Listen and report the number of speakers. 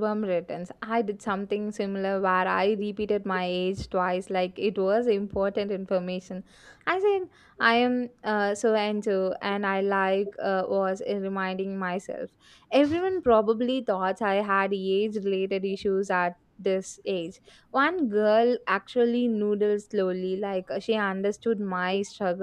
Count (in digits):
1